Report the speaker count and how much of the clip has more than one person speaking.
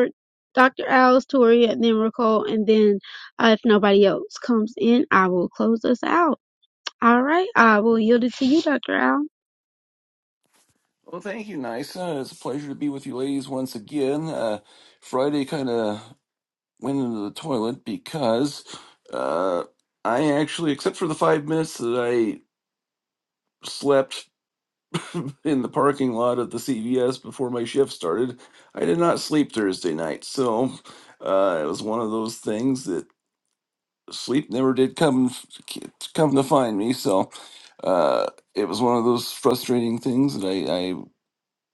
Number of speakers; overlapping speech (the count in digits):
2, no overlap